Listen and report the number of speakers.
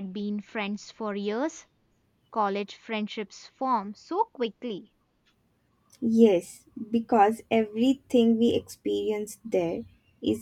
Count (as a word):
two